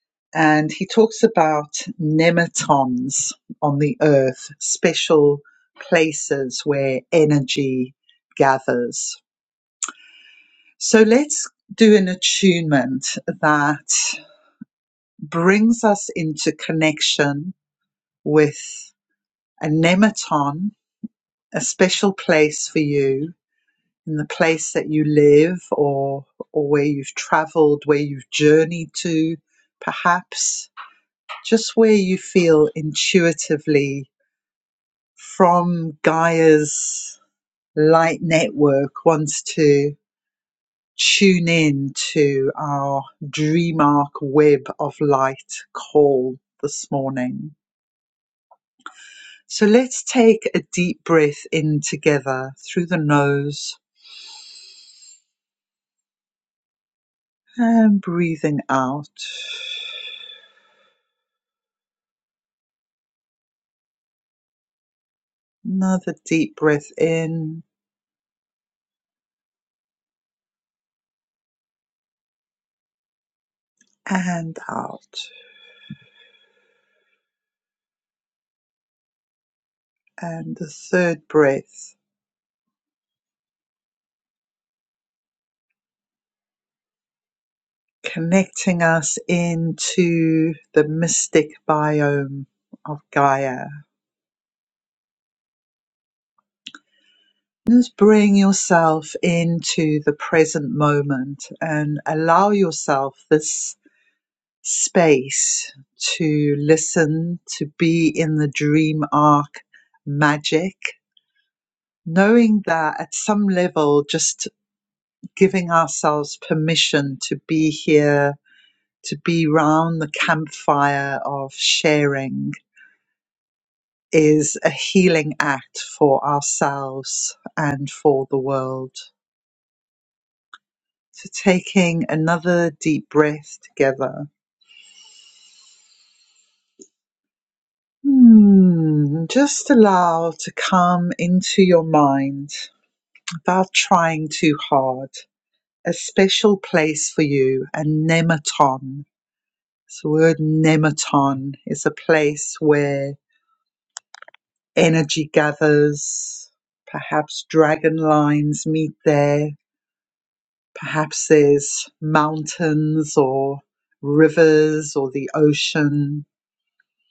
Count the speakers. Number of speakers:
one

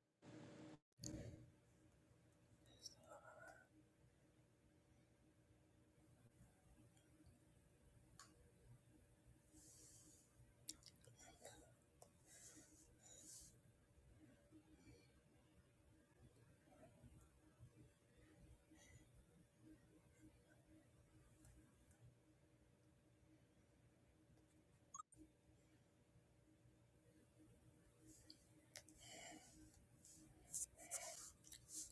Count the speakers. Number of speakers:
zero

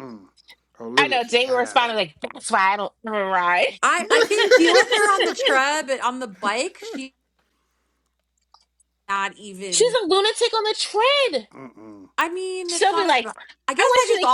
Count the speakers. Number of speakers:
three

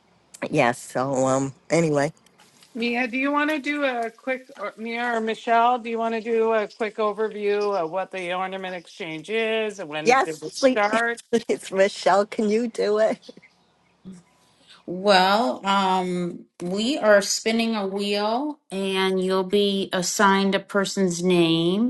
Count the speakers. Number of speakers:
three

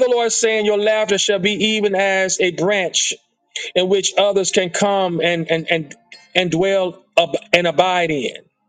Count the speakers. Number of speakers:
one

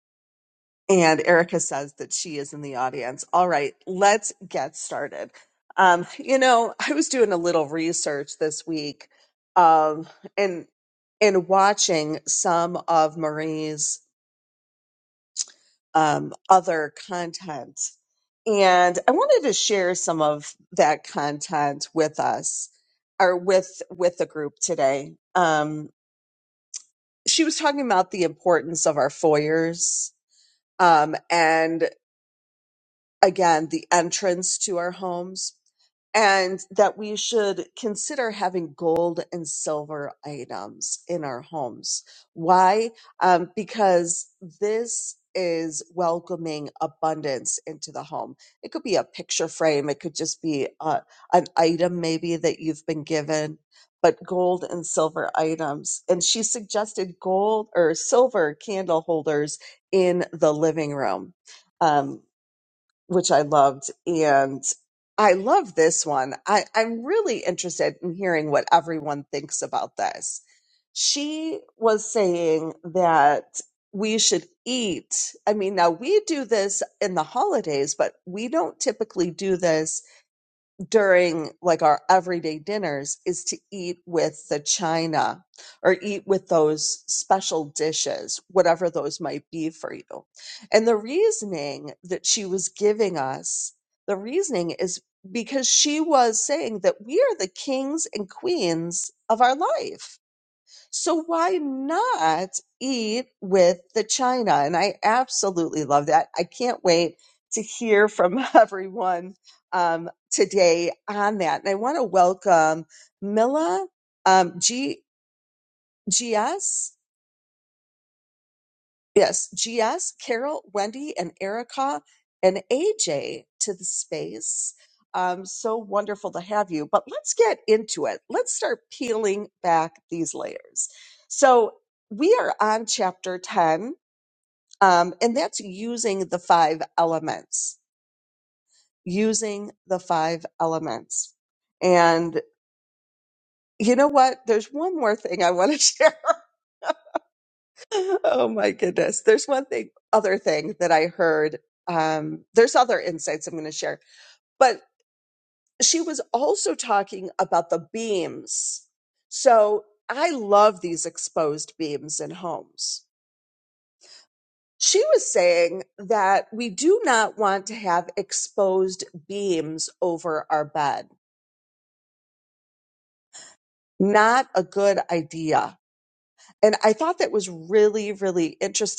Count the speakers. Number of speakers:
one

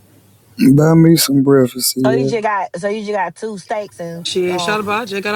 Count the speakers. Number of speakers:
three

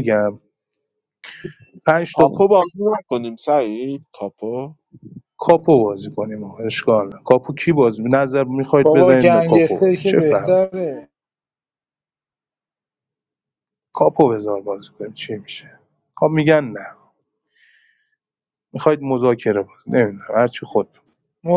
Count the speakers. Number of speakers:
three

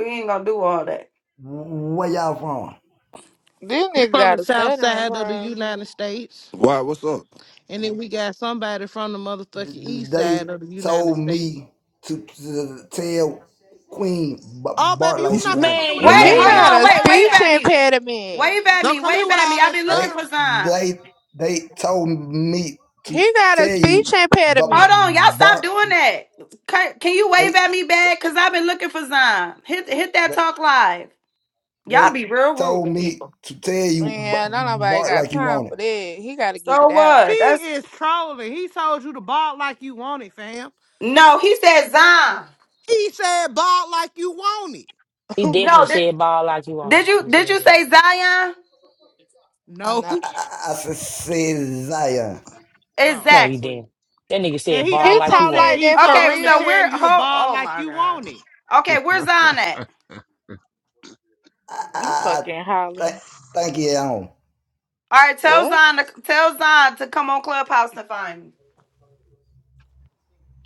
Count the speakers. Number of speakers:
six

